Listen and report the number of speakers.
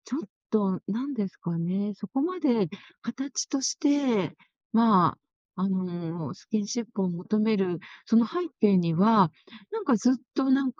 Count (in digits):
1